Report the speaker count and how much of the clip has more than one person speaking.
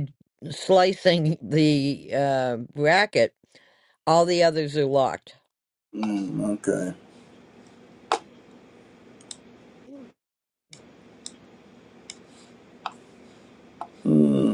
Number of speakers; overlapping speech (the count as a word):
two, no overlap